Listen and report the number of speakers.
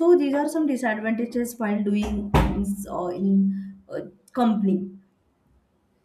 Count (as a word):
one